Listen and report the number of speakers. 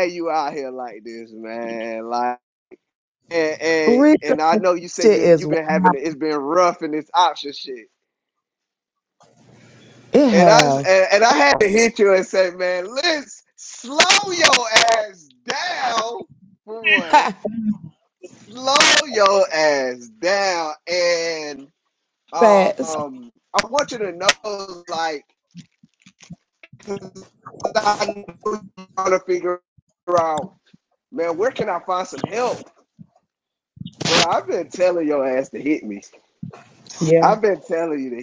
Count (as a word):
two